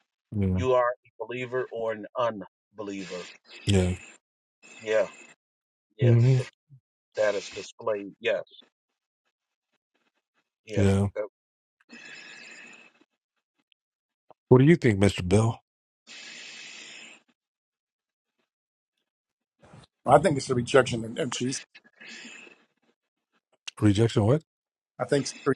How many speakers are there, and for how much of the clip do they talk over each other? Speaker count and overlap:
3, about 3%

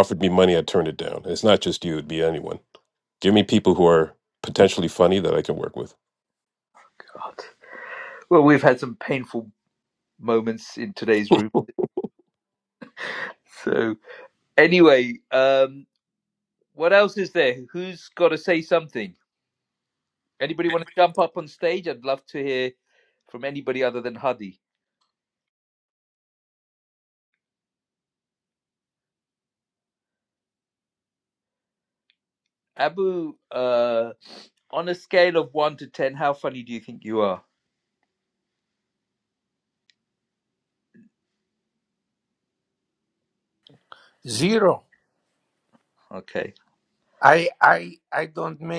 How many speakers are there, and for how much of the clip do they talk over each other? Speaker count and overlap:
3, no overlap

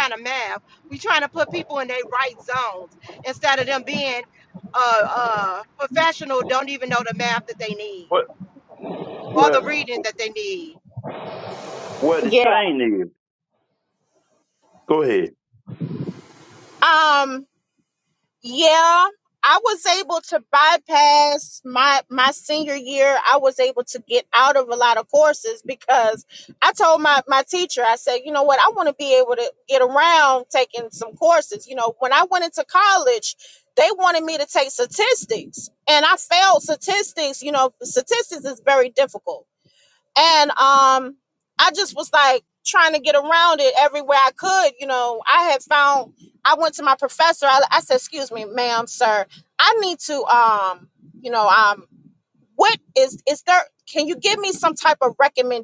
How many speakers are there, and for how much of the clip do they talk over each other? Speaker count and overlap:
3, about 1%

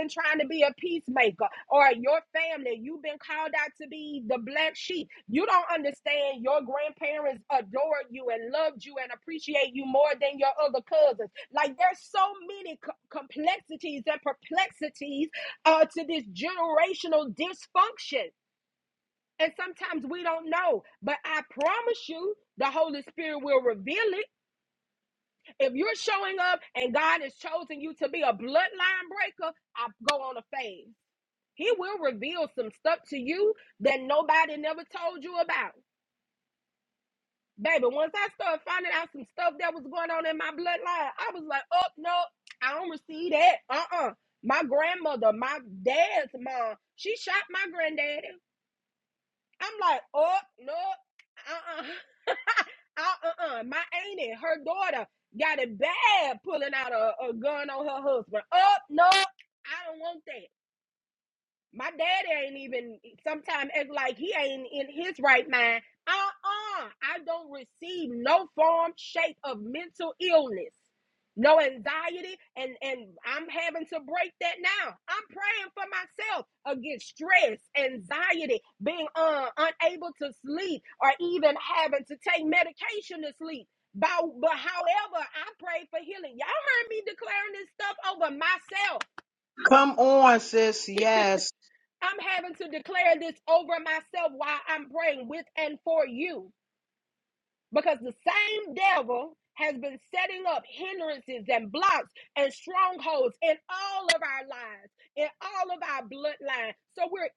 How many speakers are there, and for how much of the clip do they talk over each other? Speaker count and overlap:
2, no overlap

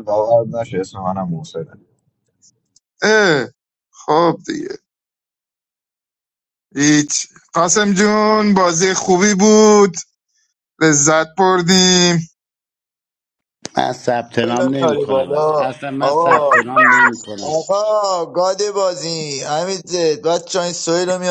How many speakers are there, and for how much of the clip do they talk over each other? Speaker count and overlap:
4, about 10%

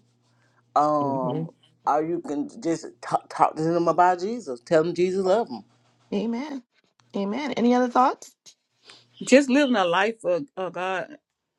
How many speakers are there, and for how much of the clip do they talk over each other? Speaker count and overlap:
3, about 4%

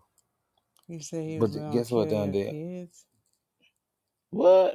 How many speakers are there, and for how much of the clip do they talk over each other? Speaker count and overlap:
2, about 27%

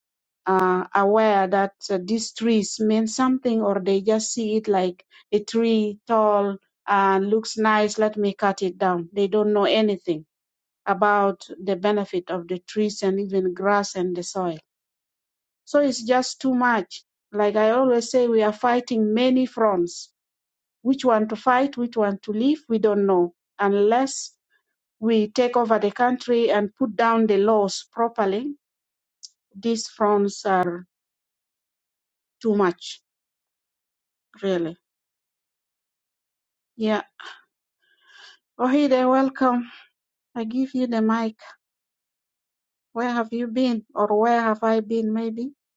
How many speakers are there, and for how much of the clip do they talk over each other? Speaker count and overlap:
1, no overlap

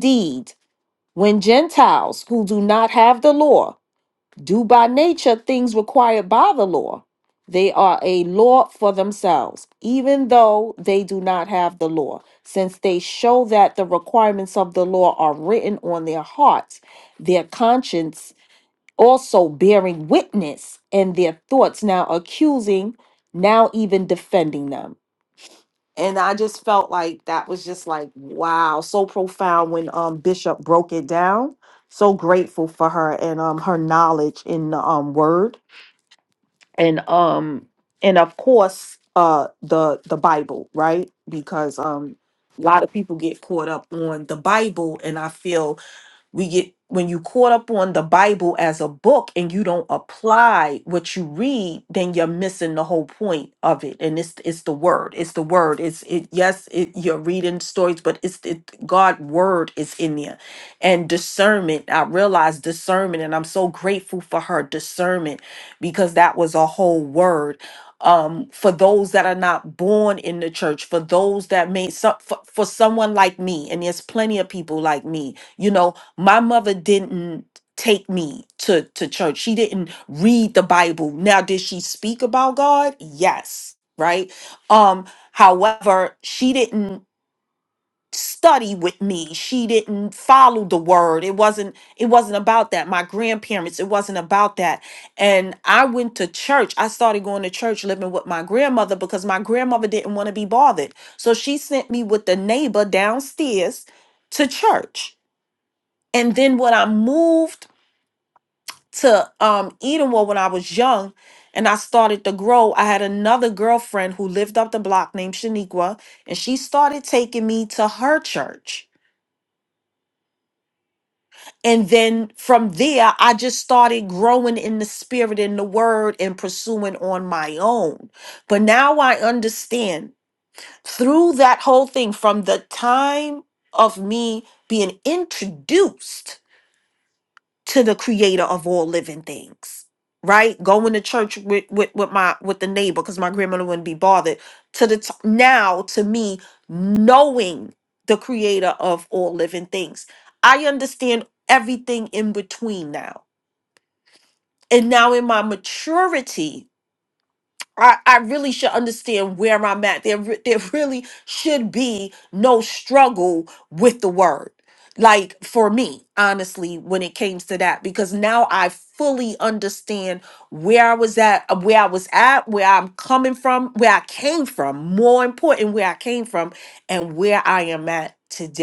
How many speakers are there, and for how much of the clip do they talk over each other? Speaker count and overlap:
1, no overlap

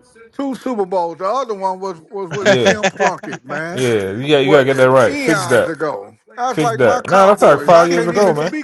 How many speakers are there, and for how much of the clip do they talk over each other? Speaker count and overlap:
2, about 43%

